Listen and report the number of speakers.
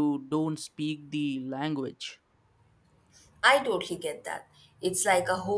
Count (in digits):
2